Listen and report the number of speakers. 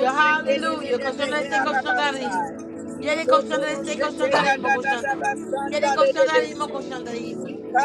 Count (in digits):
1